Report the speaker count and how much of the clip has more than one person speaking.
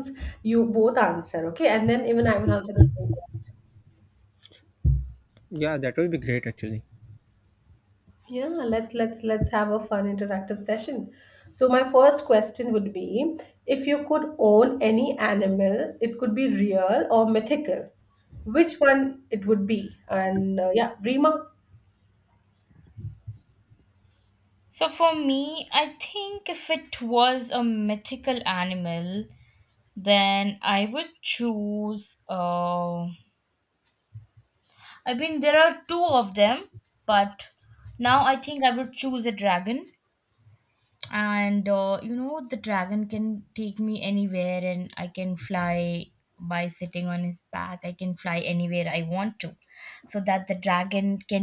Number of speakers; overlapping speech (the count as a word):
three, no overlap